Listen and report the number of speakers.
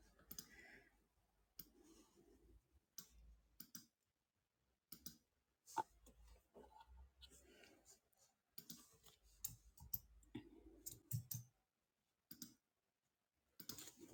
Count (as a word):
zero